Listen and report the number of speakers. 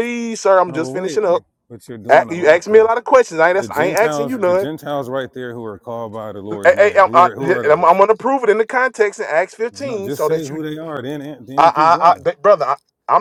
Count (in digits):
2